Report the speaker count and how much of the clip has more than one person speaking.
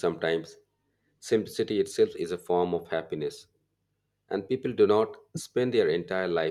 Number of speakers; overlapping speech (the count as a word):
one, no overlap